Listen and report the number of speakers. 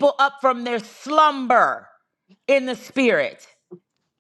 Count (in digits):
1